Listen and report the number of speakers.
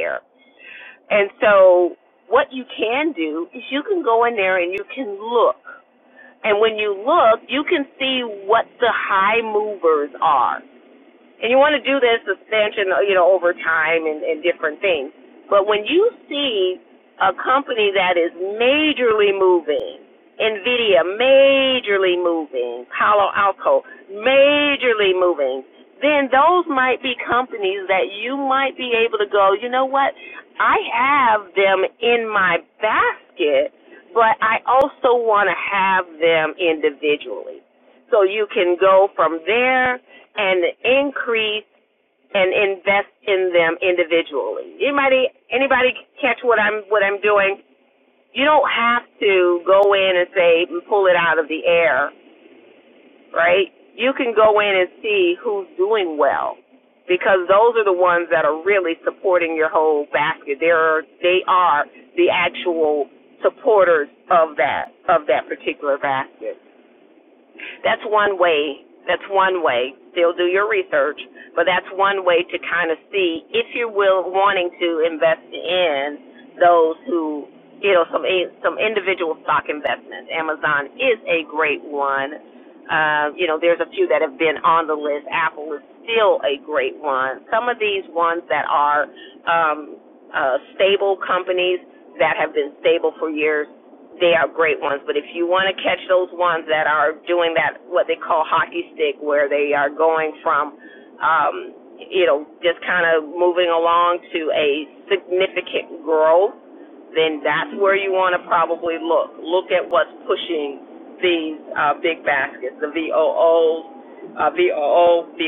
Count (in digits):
1